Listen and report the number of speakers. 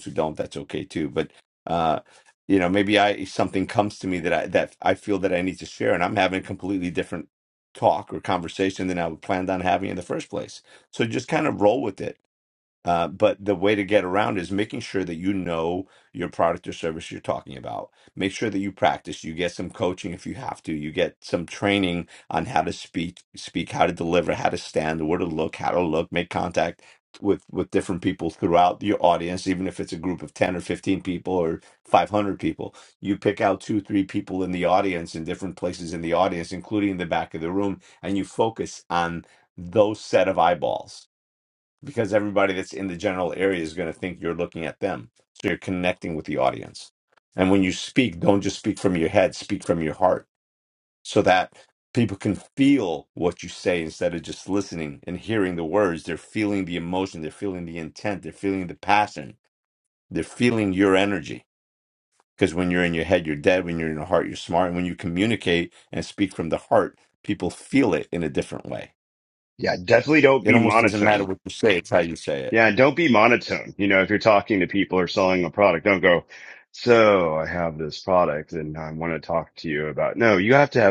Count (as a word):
two